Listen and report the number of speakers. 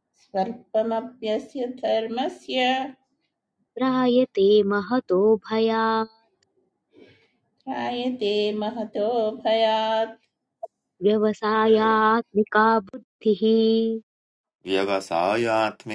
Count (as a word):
three